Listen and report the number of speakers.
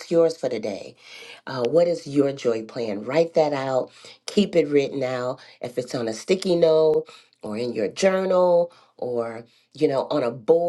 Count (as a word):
one